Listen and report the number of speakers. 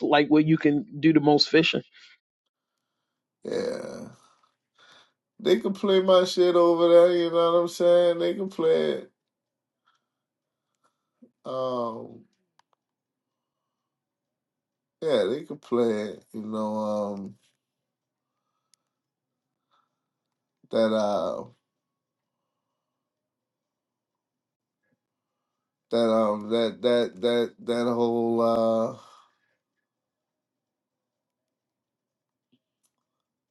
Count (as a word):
two